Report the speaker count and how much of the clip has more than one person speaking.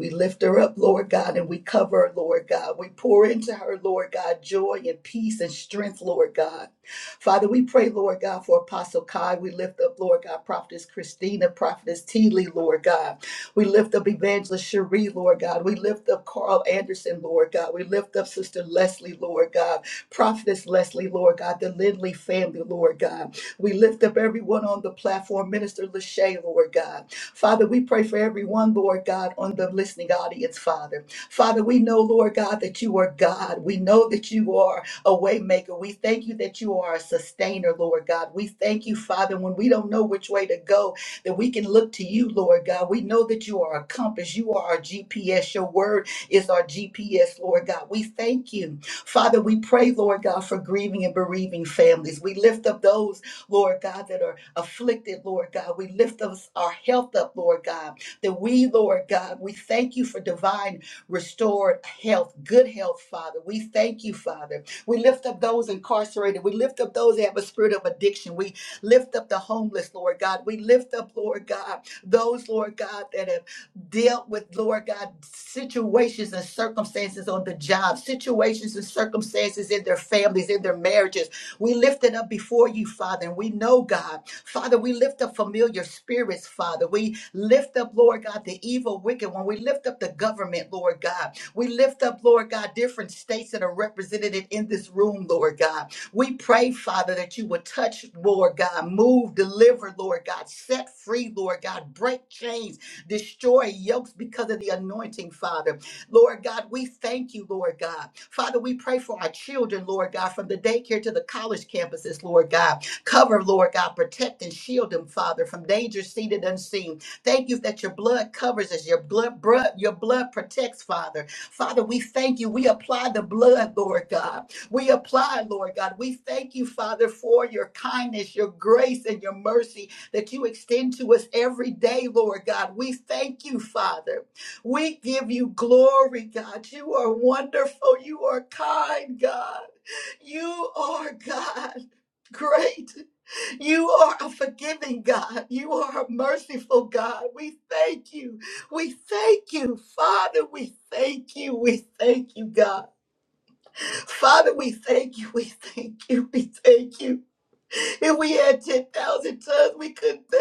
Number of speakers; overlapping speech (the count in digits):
1, no overlap